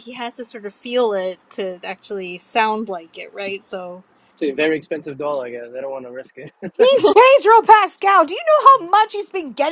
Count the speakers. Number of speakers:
three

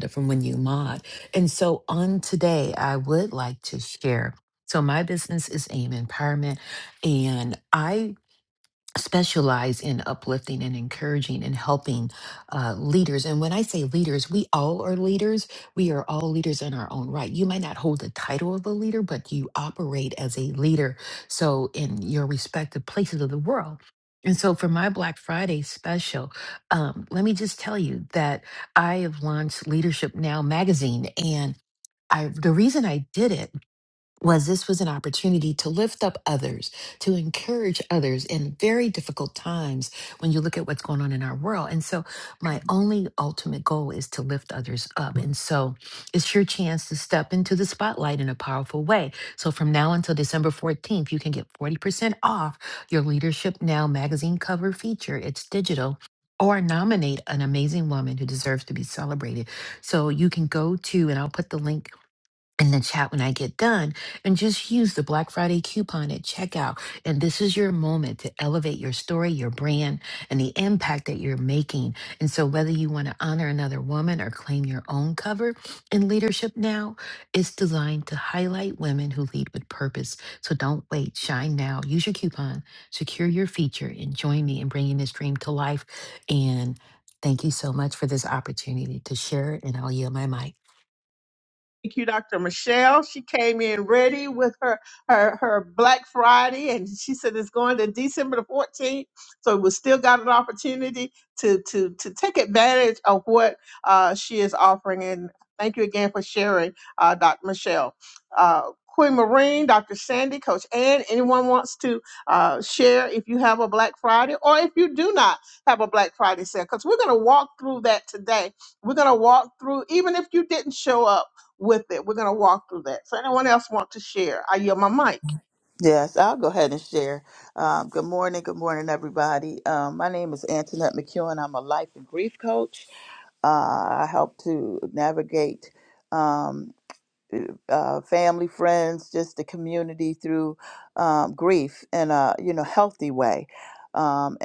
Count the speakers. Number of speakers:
three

